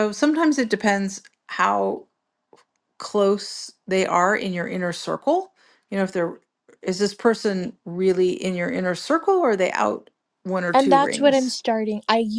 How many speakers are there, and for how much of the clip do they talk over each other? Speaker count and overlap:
two, about 5%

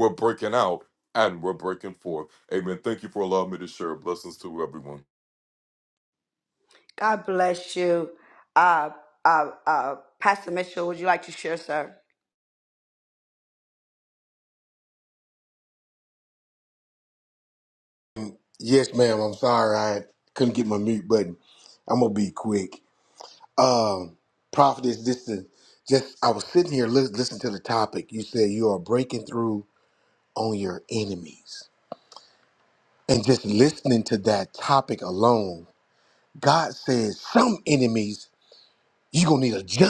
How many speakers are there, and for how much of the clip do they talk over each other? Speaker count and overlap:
three, no overlap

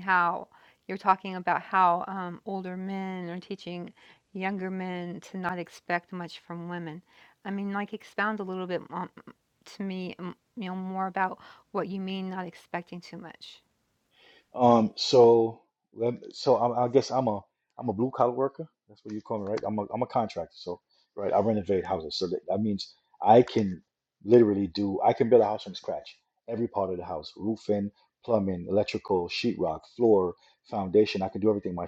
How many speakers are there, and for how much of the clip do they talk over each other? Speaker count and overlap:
two, no overlap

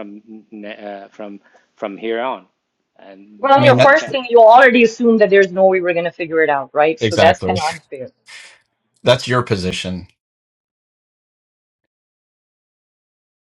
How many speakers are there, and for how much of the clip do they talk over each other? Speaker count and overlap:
three, about 10%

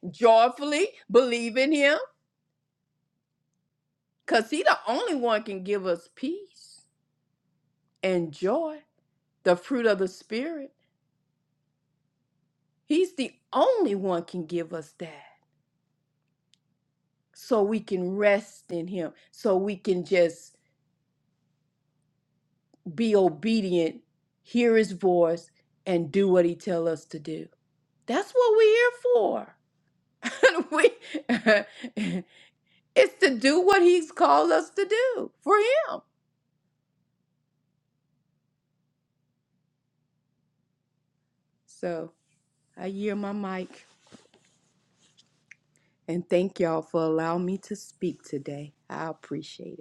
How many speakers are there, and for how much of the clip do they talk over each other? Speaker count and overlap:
one, no overlap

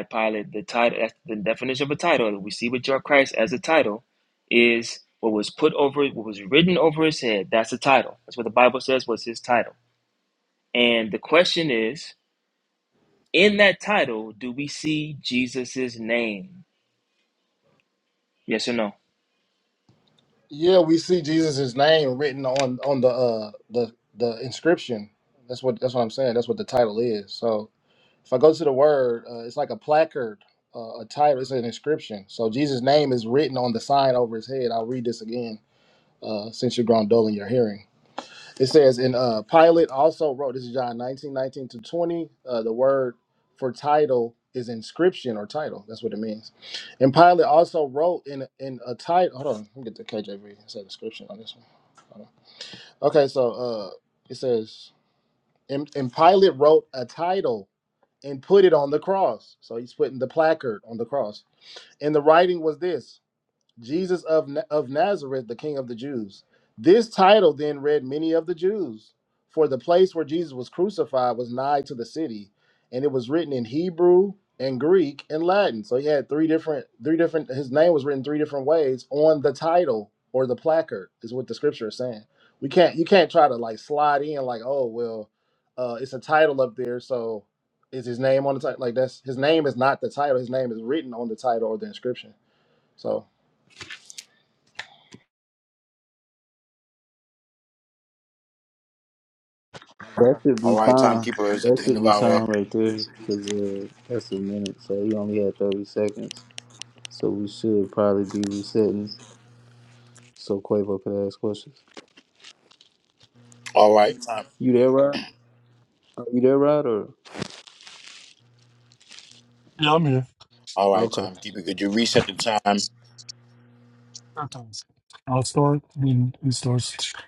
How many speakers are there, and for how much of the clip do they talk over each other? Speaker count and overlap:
five, about 2%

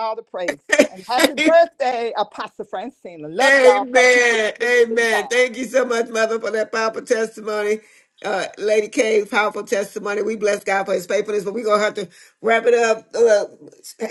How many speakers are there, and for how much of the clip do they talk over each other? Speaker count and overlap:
two, about 14%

